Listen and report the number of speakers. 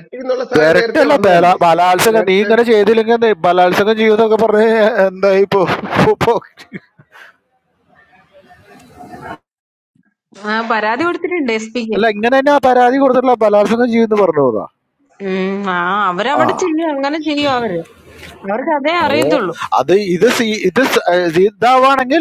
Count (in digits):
3